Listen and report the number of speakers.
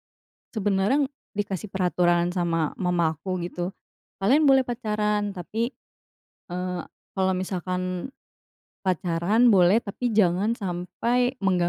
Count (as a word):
one